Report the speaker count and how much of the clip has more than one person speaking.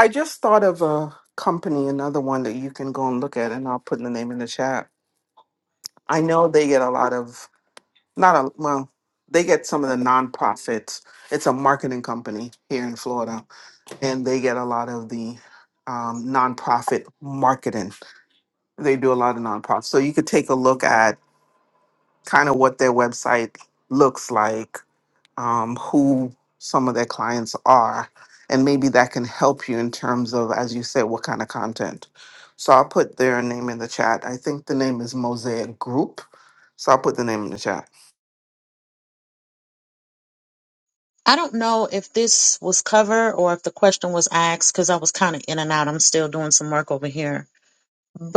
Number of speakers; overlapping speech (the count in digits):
2, no overlap